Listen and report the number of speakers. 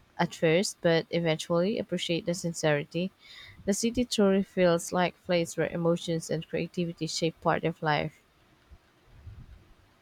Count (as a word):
one